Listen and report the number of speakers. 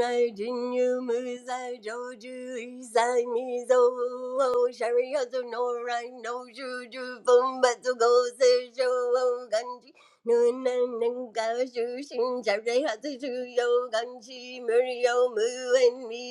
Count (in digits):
1